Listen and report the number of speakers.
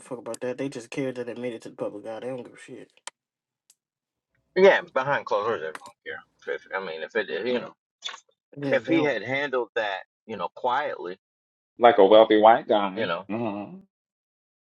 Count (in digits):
3